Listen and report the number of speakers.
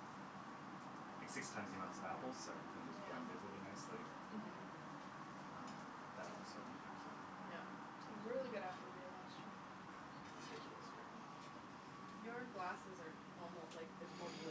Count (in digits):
3